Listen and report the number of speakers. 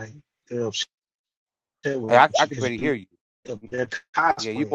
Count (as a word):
two